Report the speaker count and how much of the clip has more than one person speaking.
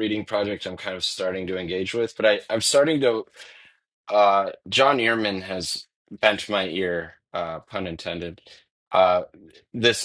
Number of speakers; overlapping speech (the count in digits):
1, no overlap